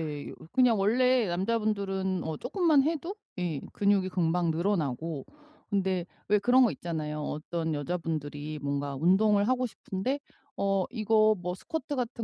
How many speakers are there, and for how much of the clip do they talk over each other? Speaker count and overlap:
one, no overlap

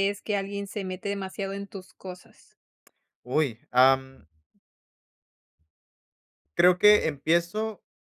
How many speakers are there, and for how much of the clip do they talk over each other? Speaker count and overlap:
two, no overlap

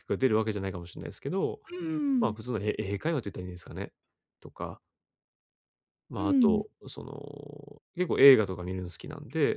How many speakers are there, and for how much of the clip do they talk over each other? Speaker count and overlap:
two, about 6%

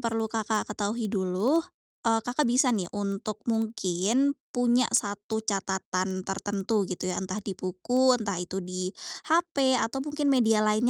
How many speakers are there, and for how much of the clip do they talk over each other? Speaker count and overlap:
one, no overlap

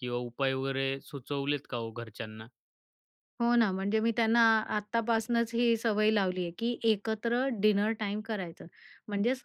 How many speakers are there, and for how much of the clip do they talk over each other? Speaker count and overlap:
two, no overlap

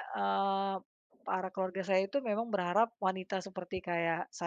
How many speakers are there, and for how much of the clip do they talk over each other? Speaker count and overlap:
one, no overlap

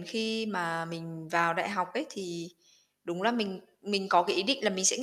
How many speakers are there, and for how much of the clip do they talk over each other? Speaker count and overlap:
one, no overlap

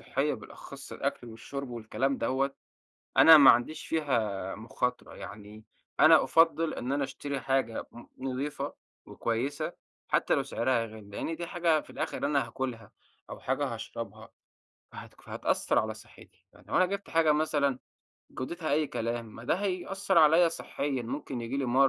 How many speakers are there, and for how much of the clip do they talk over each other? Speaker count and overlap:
one, no overlap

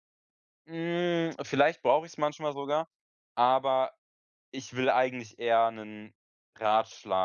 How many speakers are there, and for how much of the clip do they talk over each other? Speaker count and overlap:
one, no overlap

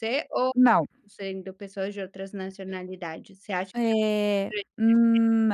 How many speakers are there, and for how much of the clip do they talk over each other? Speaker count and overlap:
two, no overlap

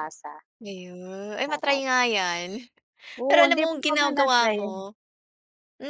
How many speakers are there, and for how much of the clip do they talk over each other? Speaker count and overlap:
two, about 31%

